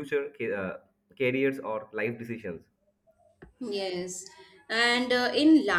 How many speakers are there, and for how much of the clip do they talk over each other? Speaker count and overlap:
2, no overlap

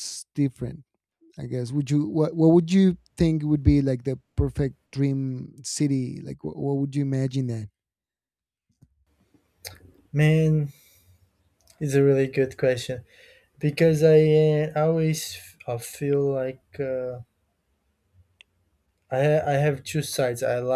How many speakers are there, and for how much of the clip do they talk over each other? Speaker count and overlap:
2, no overlap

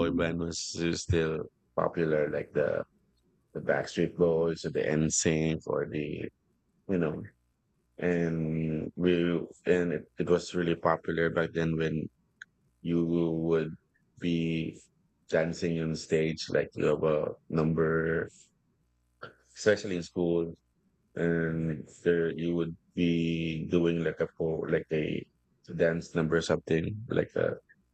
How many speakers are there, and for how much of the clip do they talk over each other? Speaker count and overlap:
1, no overlap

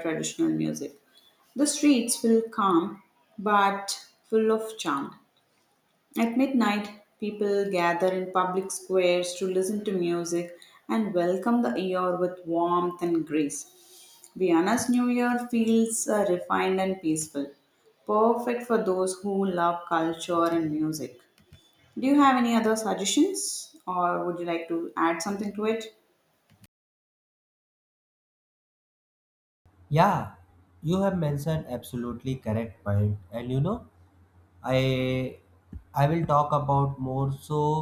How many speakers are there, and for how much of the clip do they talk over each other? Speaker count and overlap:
2, no overlap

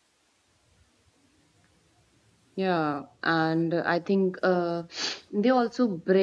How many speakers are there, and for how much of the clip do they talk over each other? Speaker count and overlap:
1, no overlap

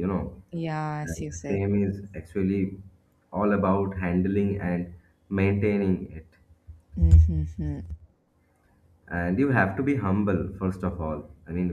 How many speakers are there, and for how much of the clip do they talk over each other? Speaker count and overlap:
2, about 5%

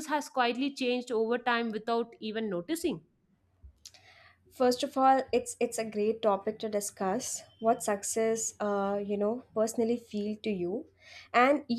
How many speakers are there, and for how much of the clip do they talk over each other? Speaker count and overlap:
2, no overlap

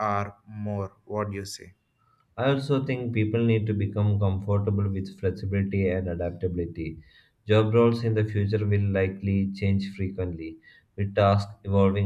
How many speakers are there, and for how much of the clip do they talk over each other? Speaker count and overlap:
2, no overlap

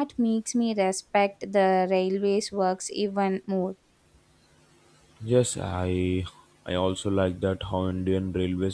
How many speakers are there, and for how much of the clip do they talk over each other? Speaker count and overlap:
2, no overlap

